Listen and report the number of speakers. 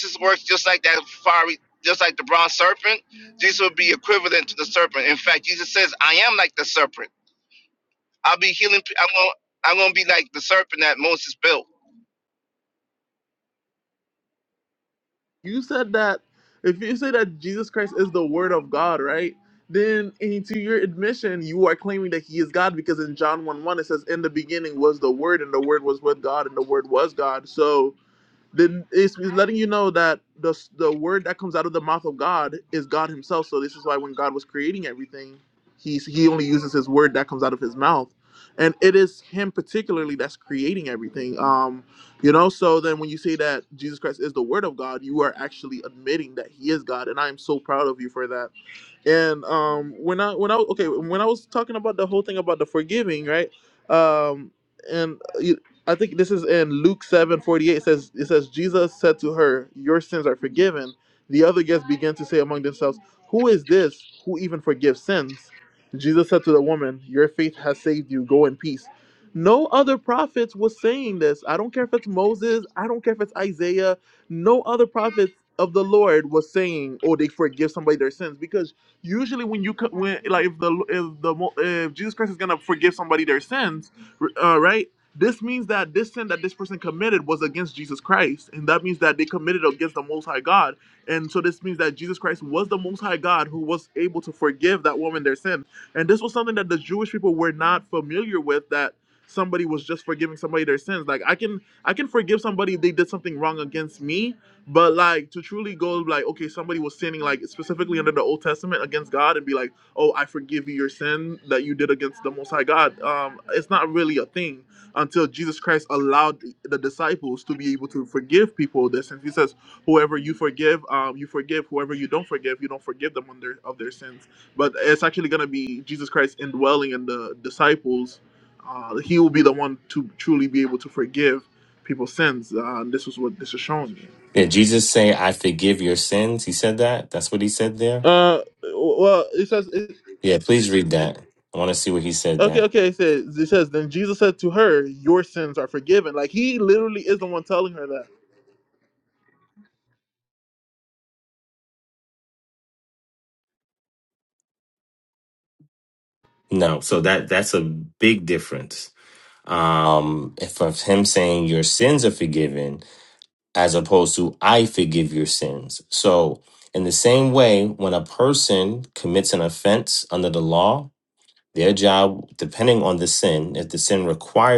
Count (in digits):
3